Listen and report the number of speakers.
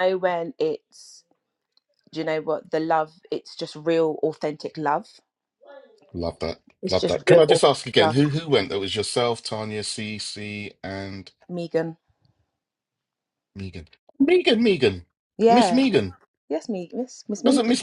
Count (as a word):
two